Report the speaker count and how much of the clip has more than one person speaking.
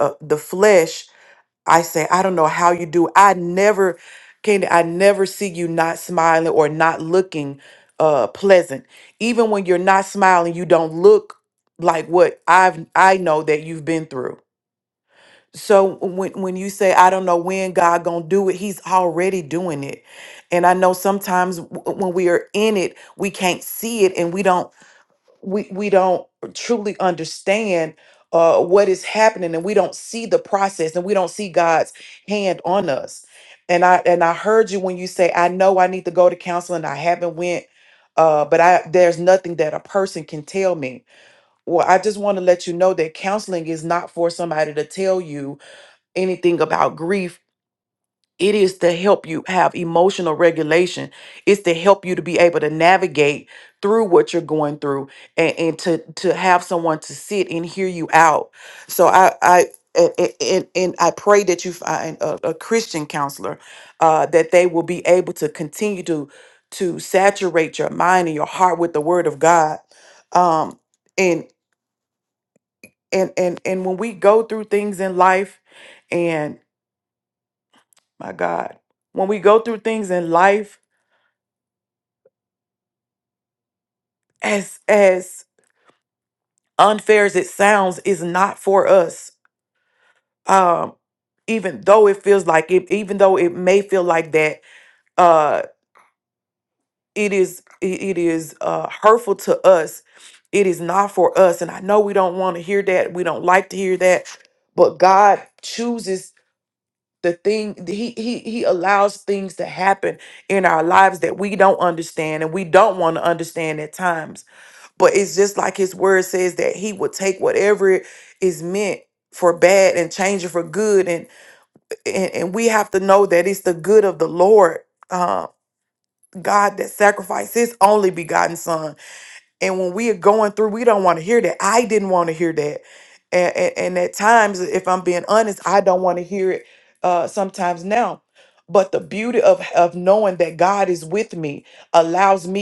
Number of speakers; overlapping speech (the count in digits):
1, no overlap